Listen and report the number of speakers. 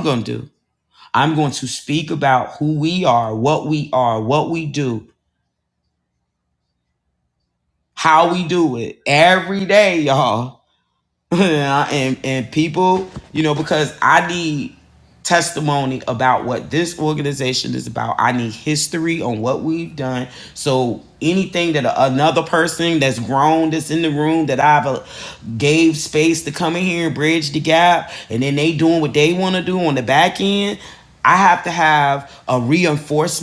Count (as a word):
one